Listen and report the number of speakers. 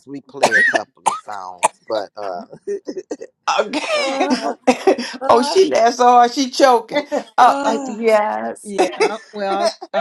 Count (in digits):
3